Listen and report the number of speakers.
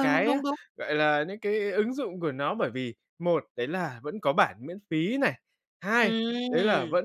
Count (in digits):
2